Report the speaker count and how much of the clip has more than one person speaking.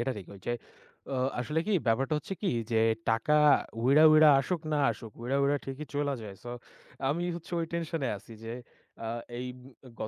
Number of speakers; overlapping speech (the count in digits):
1, no overlap